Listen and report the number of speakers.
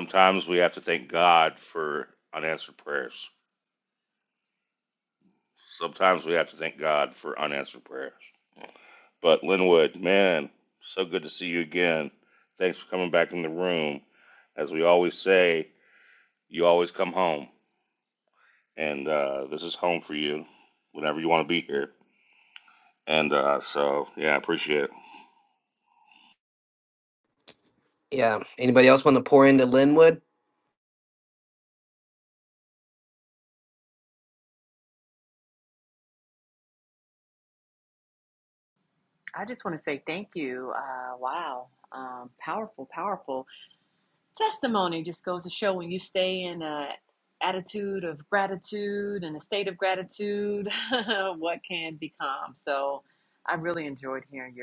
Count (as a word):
three